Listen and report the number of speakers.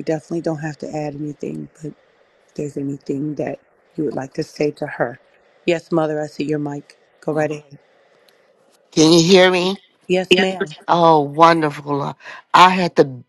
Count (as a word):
two